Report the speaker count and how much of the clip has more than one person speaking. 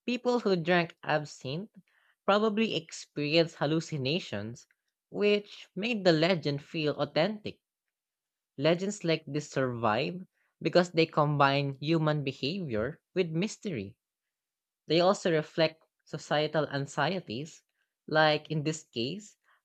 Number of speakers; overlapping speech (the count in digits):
1, no overlap